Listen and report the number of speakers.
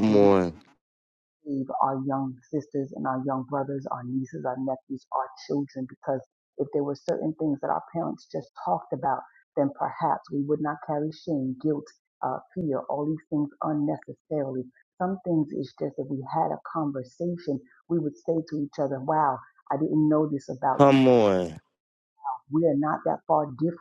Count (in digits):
2